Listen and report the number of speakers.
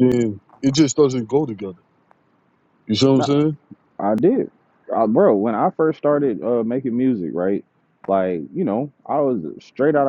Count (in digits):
2